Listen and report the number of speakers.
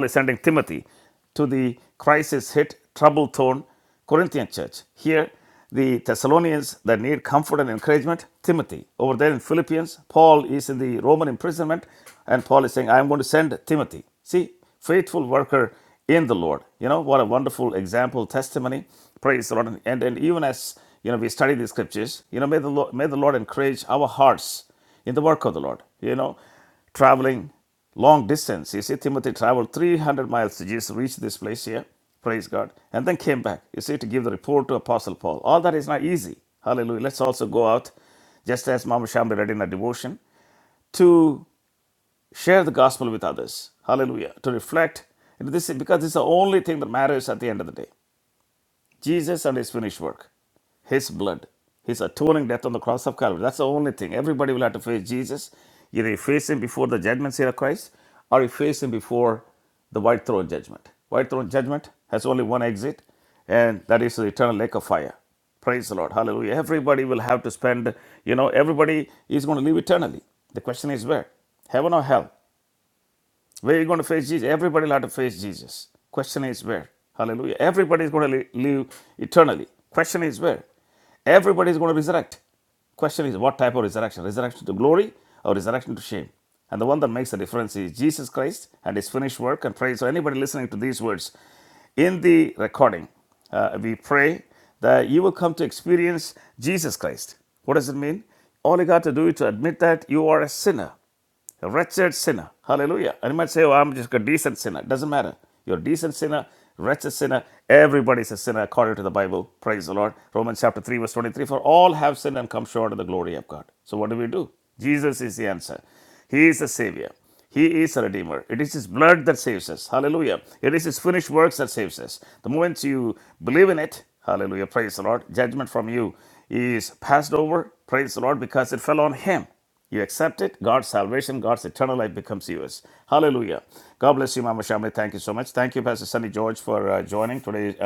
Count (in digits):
1